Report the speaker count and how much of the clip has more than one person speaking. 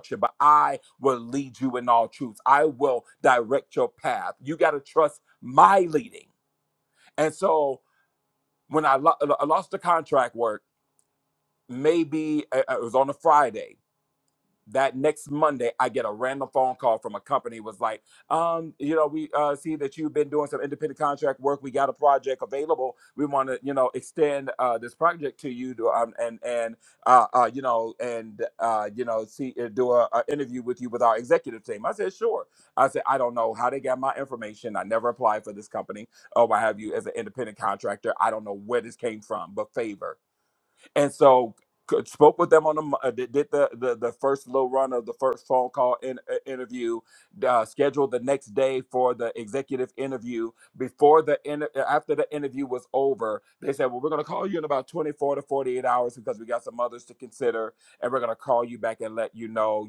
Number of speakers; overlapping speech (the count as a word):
one, no overlap